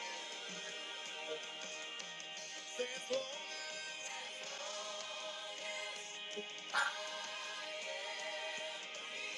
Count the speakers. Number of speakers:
0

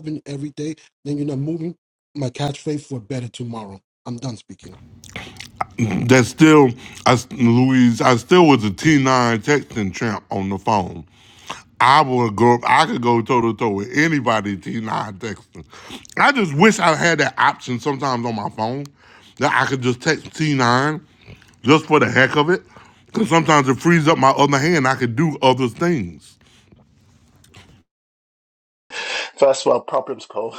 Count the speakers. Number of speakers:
3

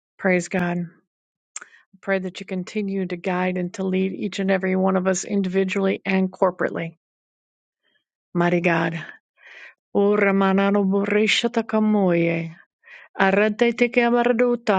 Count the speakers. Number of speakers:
1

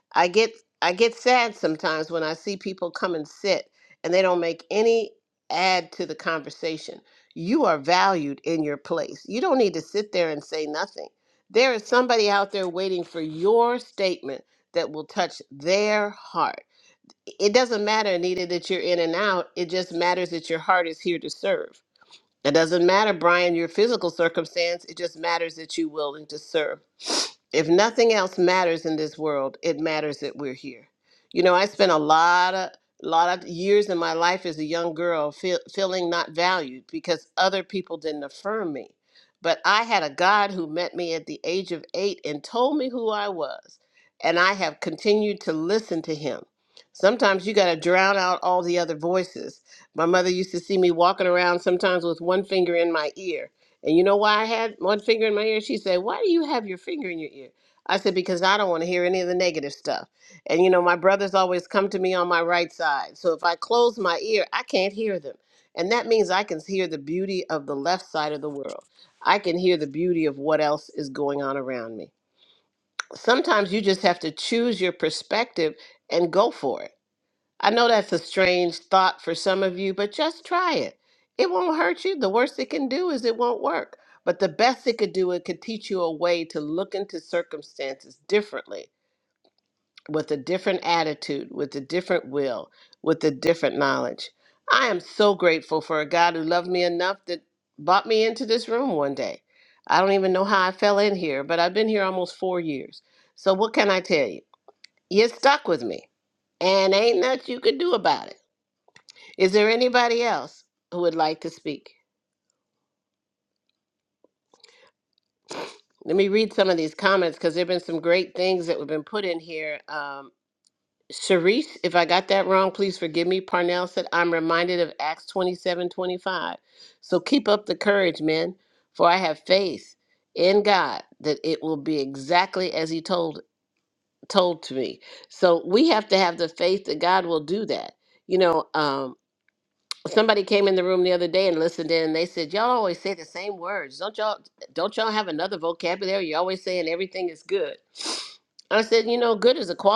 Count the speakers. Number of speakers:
1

